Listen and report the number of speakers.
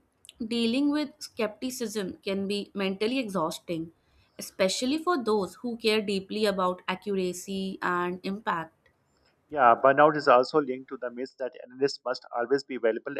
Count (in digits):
2